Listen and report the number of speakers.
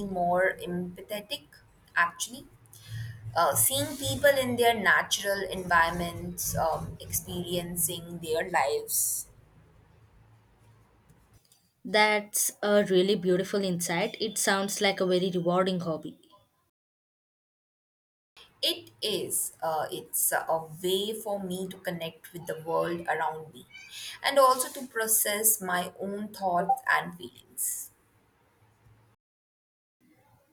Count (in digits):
2